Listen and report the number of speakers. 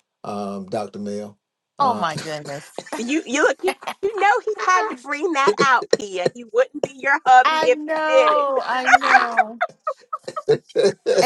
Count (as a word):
three